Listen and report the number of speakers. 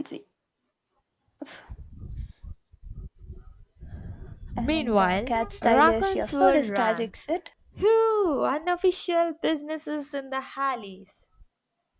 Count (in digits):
2